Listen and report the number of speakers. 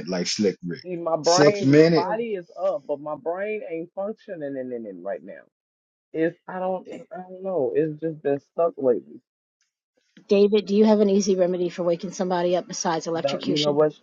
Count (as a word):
three